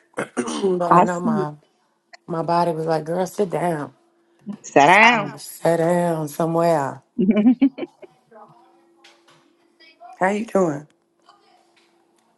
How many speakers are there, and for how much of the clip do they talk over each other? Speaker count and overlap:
two, about 5%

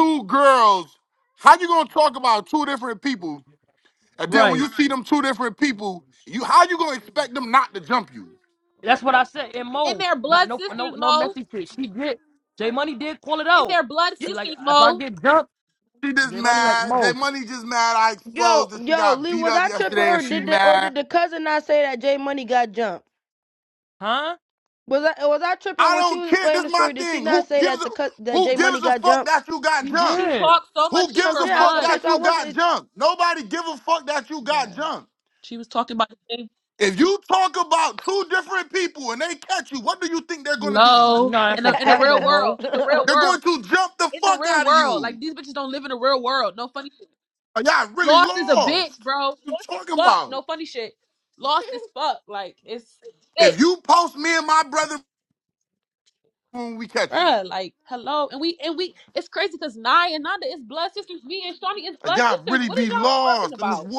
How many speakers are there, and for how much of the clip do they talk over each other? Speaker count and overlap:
four, about 29%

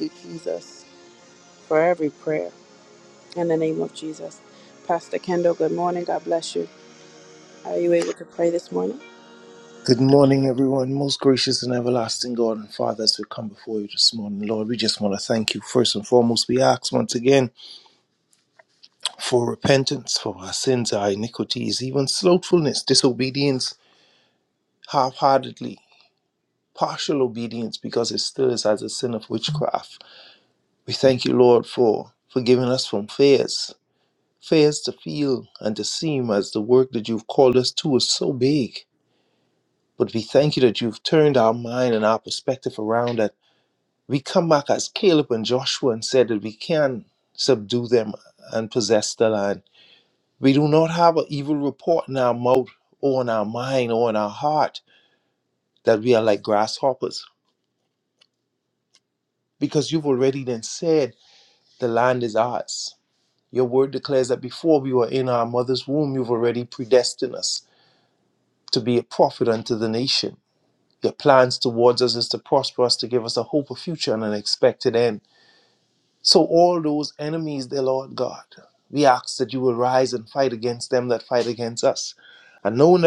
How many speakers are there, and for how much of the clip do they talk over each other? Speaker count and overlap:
two, no overlap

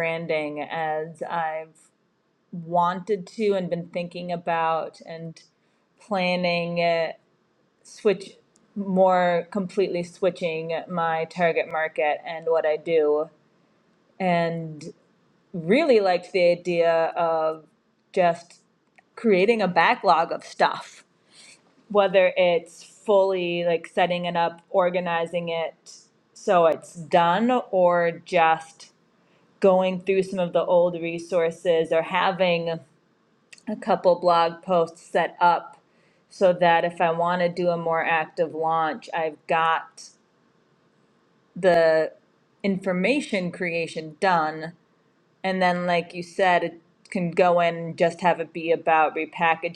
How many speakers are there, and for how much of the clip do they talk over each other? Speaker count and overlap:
one, no overlap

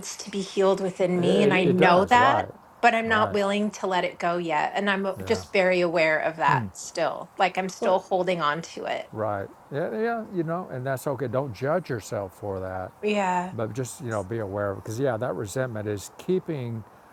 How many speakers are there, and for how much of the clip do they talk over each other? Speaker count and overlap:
two, about 12%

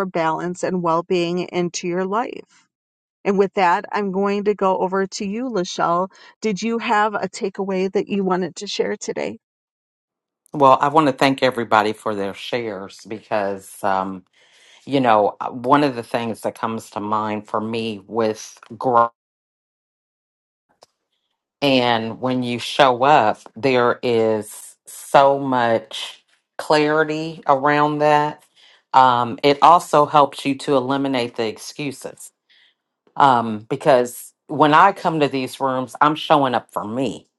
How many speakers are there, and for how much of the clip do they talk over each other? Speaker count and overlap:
two, no overlap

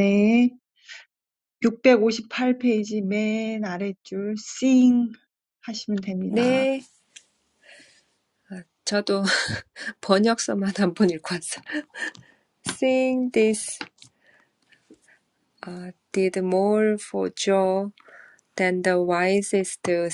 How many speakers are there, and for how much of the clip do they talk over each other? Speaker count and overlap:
two, about 2%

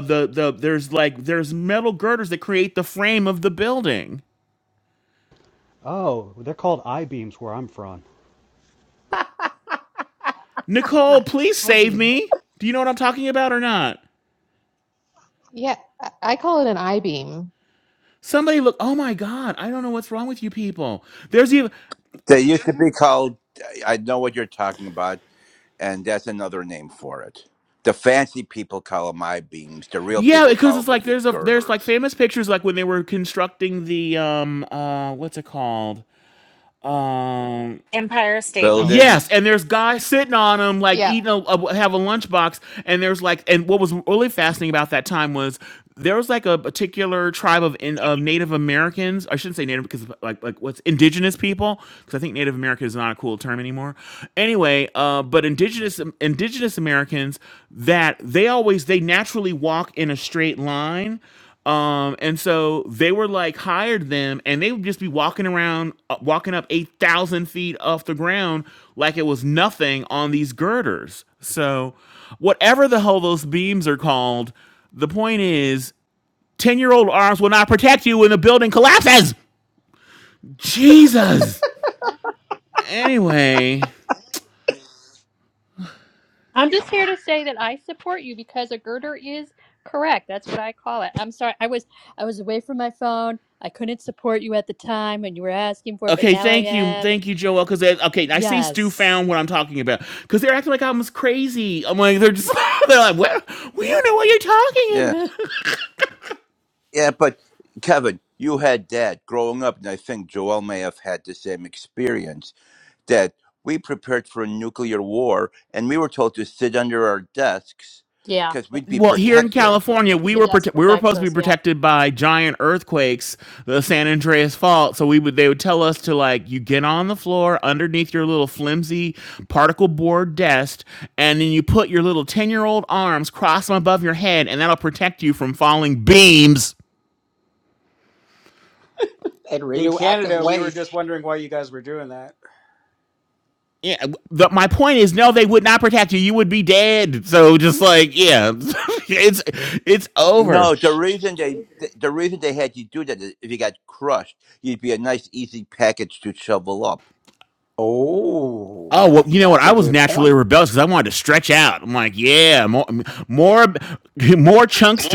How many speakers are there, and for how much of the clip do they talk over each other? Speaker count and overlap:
eight, about 6%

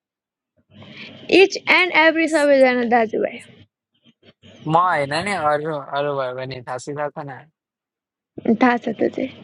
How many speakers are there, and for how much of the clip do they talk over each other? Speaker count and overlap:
two, no overlap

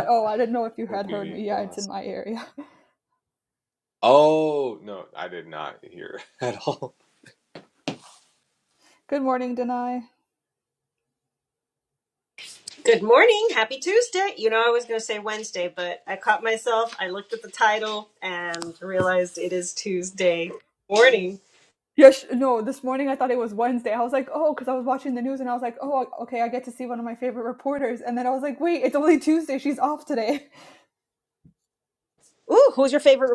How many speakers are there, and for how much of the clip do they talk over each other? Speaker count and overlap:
three, about 3%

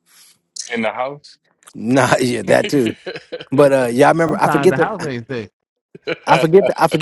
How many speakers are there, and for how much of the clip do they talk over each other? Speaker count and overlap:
three, about 15%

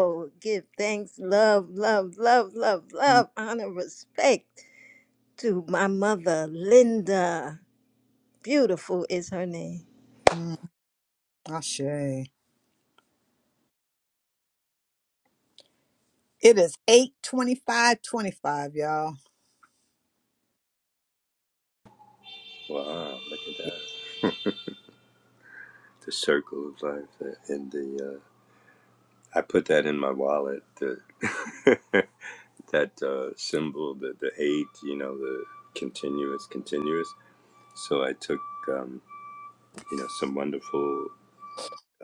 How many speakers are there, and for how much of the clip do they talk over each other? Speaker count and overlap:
three, under 1%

